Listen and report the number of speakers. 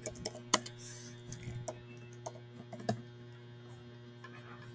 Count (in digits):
0